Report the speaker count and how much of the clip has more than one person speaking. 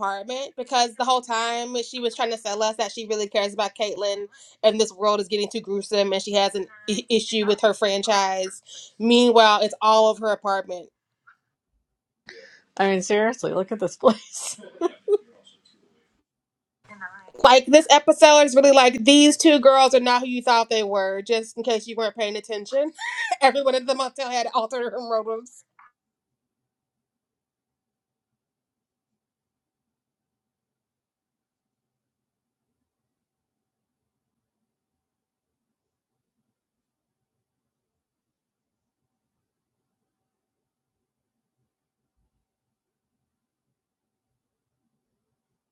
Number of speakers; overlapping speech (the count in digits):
2, no overlap